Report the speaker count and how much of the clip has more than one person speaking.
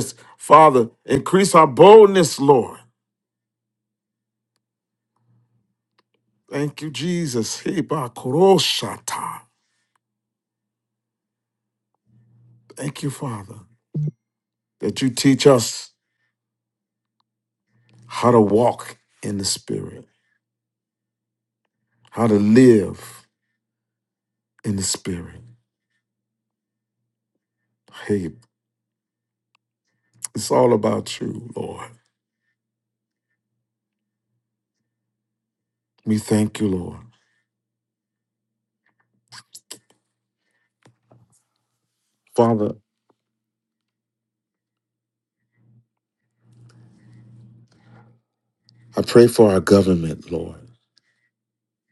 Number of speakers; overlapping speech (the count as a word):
one, no overlap